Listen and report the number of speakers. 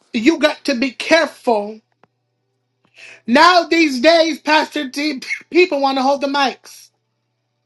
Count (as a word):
one